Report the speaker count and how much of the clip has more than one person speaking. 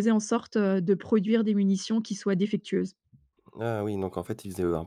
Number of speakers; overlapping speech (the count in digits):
2, no overlap